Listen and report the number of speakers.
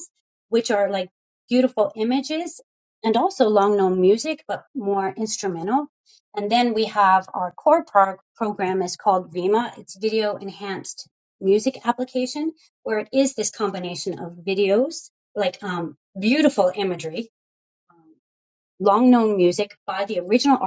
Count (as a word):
one